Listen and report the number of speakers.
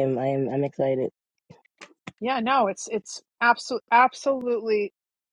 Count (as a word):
two